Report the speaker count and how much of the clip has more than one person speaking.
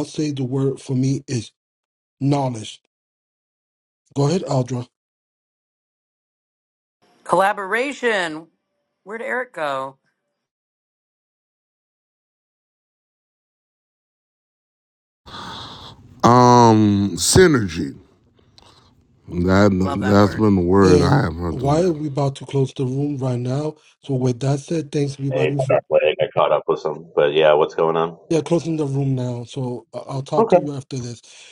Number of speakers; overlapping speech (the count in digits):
4, about 6%